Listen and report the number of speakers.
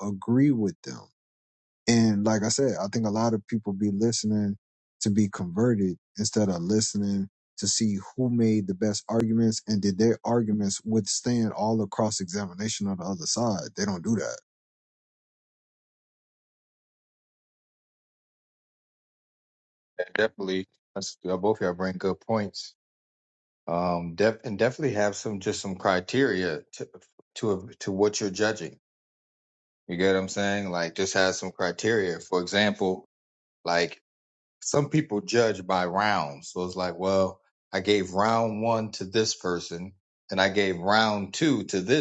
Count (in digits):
2